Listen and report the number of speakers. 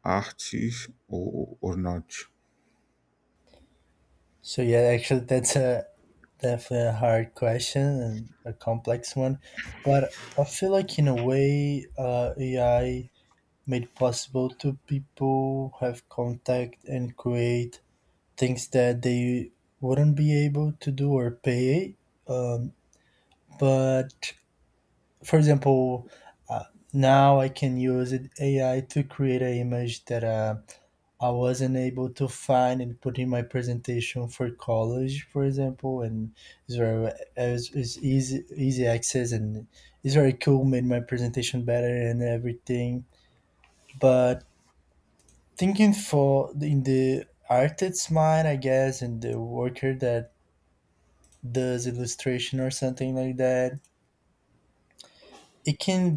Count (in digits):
2